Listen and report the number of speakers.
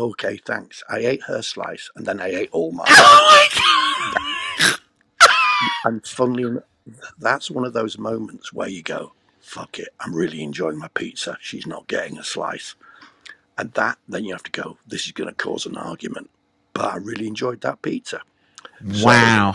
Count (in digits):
2